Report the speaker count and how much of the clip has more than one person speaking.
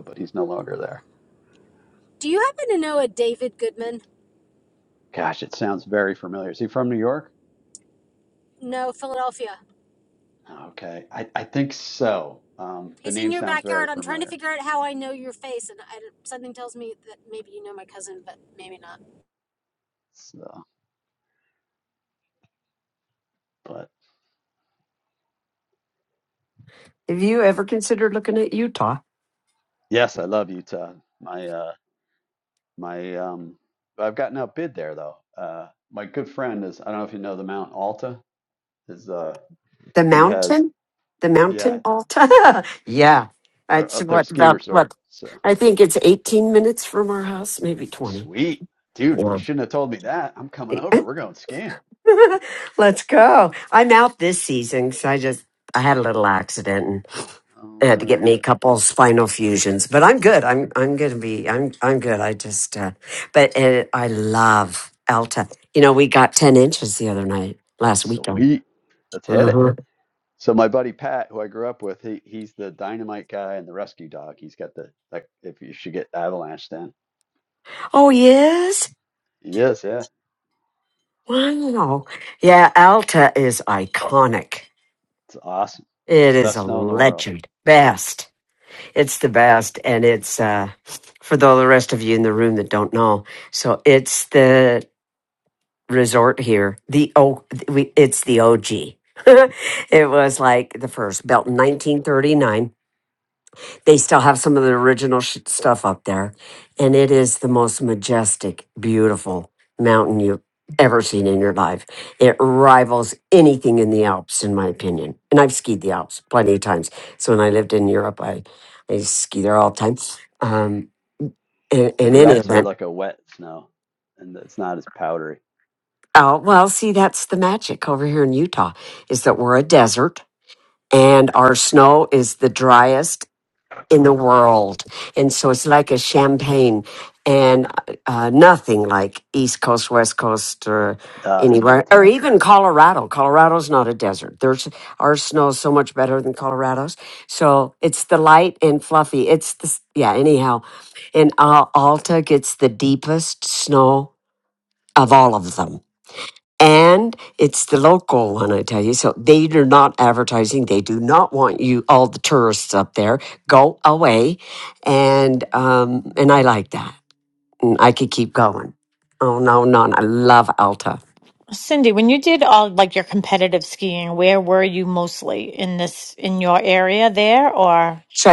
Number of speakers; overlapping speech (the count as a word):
four, about 4%